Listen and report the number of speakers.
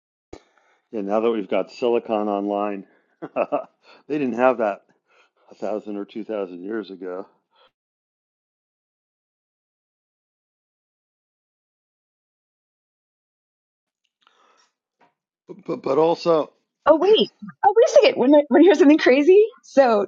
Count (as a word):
two